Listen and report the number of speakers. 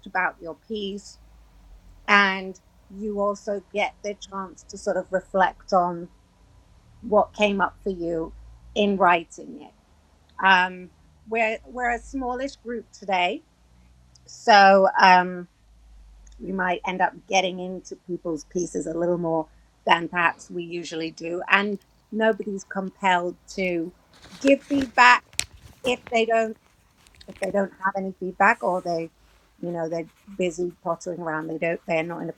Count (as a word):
one